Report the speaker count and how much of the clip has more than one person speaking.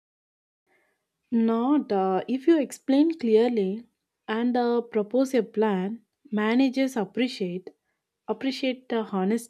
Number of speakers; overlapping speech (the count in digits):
1, no overlap